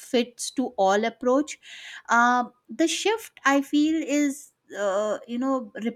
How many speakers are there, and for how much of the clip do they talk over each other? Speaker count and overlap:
one, no overlap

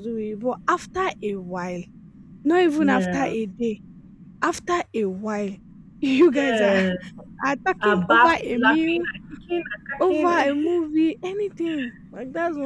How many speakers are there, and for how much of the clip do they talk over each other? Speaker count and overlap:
two, about 25%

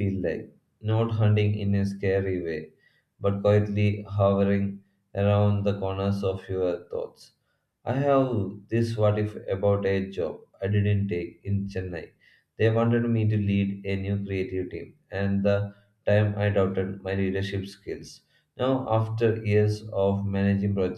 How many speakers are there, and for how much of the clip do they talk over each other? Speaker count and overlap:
one, no overlap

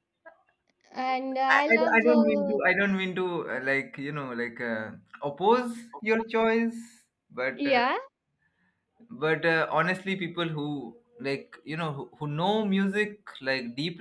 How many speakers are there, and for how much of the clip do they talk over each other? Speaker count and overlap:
two, about 10%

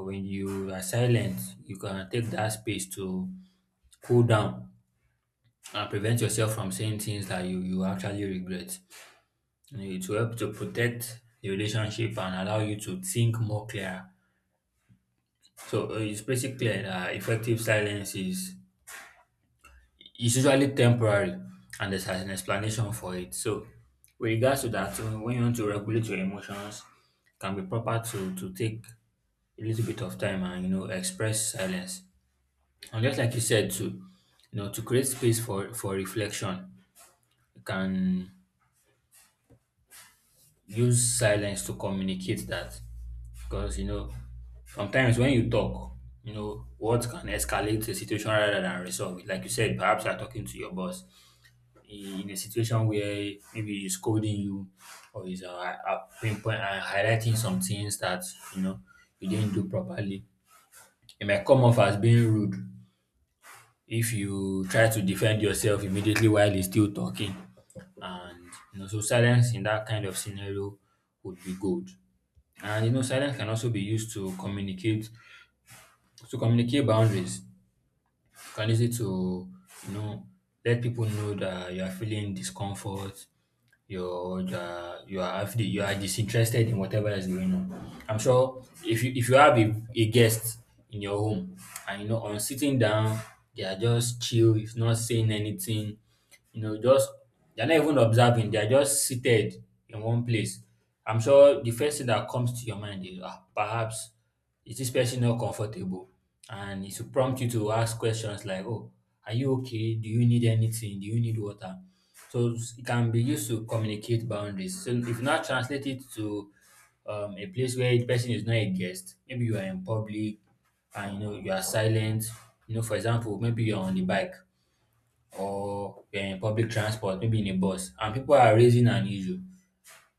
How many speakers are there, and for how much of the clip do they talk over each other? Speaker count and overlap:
one, no overlap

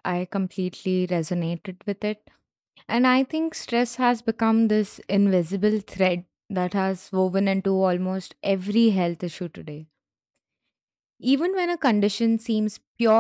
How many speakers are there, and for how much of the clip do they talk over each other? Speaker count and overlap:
one, no overlap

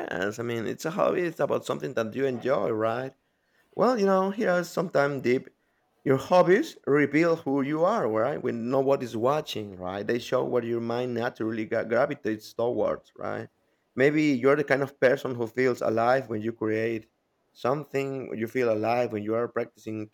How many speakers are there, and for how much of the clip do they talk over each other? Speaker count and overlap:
one, no overlap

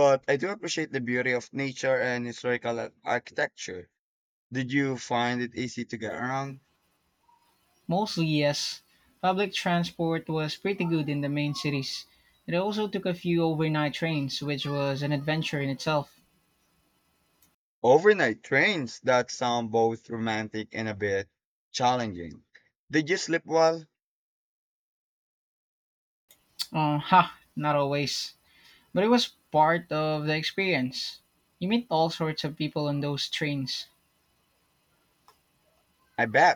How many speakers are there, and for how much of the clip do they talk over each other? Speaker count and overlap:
two, no overlap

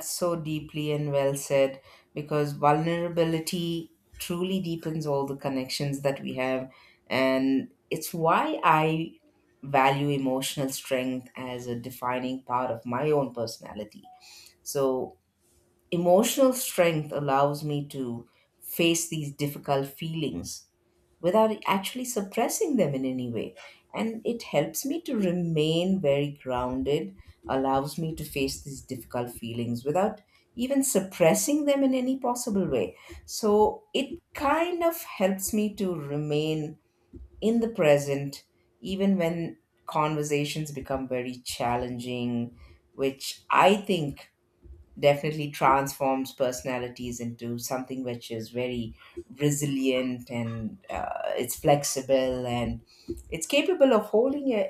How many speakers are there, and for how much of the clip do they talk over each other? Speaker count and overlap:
one, no overlap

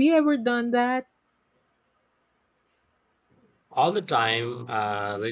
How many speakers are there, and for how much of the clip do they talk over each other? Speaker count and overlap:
two, no overlap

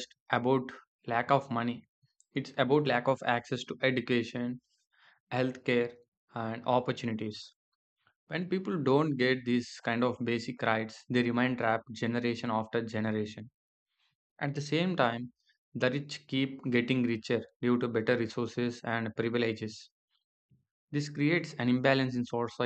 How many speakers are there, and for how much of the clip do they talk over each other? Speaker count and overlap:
one, no overlap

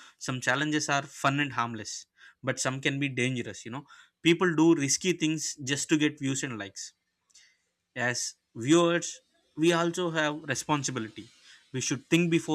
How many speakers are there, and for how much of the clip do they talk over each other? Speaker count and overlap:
one, no overlap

